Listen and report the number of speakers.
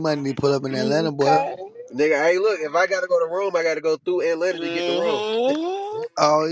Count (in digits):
3